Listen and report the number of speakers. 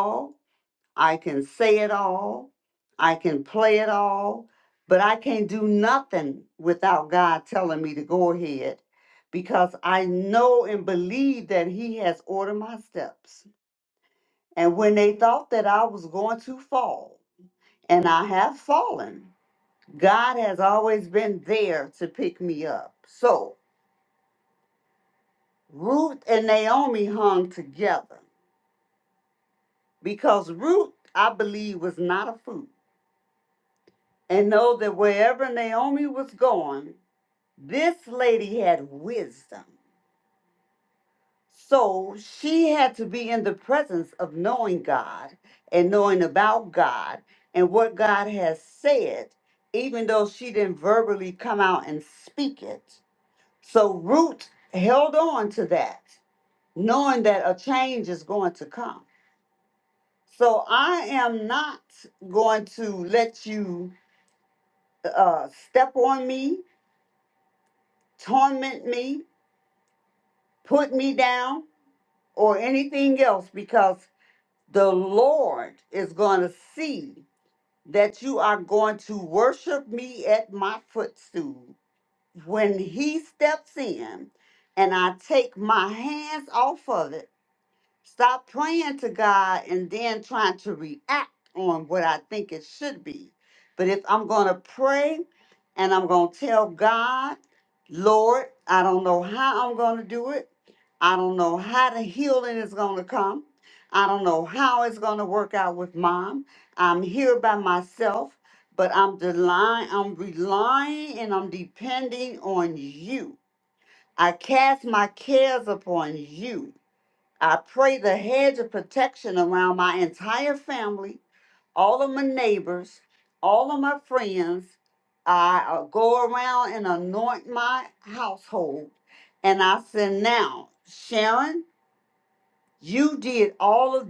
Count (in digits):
1